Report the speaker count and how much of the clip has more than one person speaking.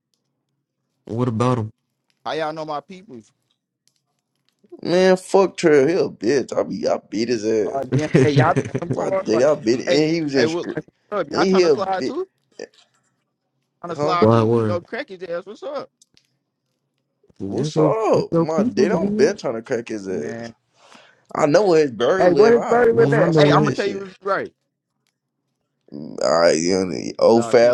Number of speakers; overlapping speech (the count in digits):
3, about 26%